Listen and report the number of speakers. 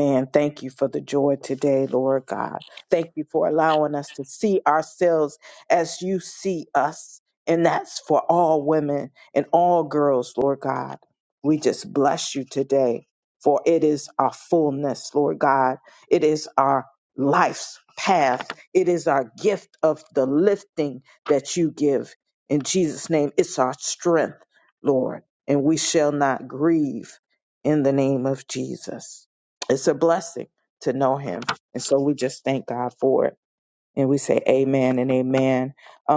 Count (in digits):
1